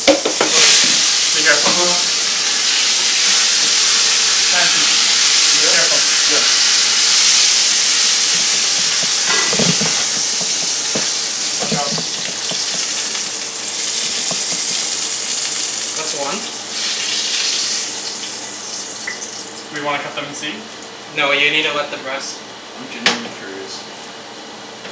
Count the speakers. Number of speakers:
3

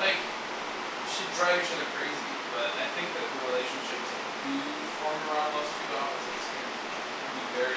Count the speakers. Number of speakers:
1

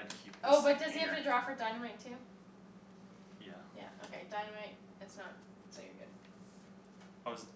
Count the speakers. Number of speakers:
2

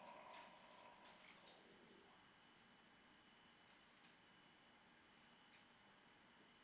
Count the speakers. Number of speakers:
1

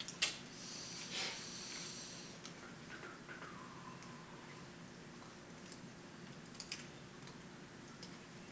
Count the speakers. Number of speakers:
0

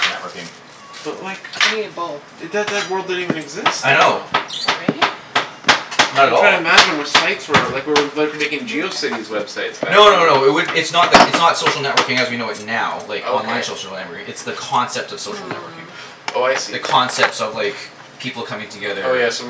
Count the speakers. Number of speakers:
3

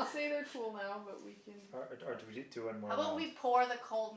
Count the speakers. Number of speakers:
3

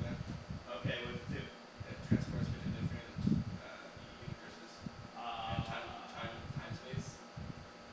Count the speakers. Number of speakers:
2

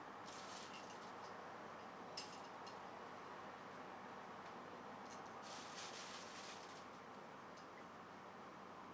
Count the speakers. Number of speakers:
0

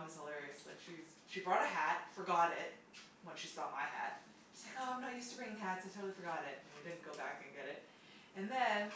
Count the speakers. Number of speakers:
1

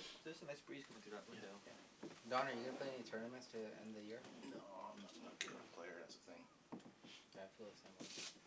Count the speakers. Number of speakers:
3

